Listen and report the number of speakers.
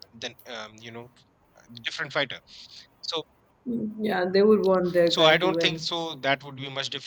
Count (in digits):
2